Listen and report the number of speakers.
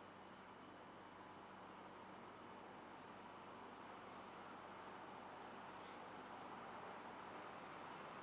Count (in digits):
0